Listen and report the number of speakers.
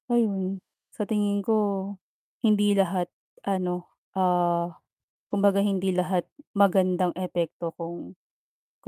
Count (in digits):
1